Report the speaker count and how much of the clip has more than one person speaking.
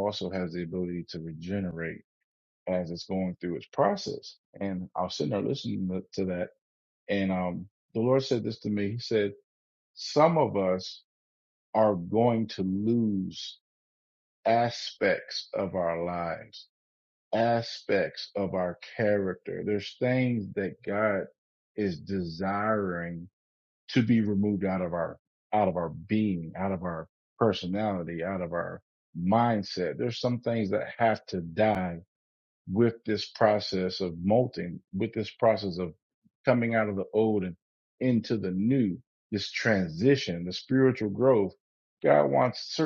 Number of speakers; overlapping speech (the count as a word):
one, no overlap